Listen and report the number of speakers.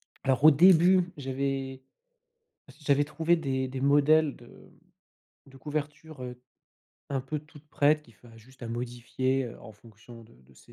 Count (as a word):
one